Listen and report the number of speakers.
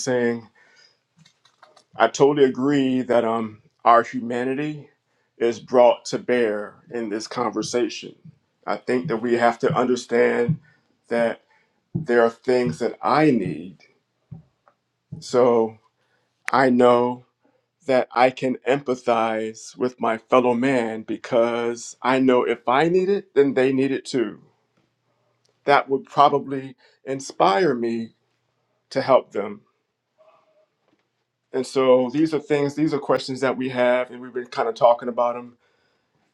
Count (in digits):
1